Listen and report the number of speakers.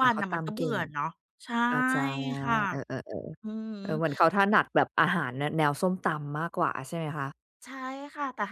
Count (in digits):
2